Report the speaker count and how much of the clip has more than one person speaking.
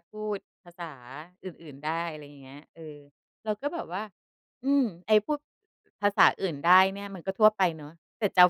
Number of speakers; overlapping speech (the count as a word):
one, no overlap